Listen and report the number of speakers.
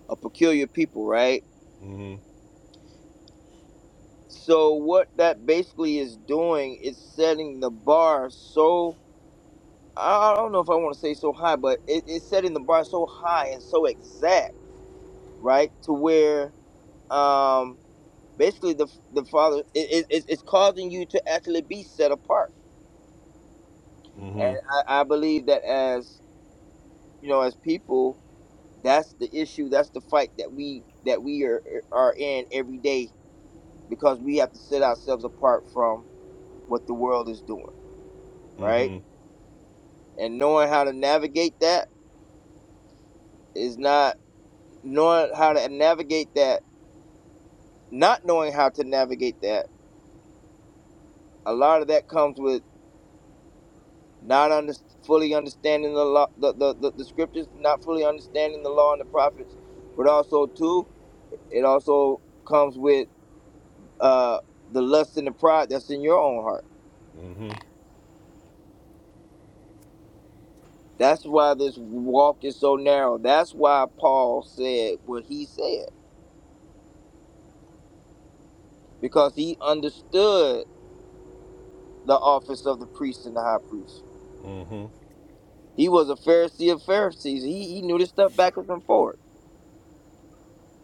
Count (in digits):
2